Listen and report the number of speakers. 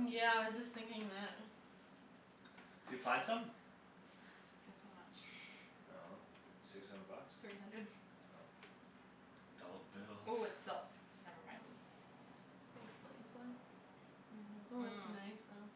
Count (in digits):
4